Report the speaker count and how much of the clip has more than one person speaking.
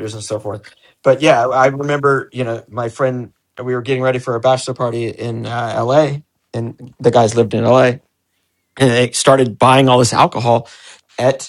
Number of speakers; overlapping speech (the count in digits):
1, no overlap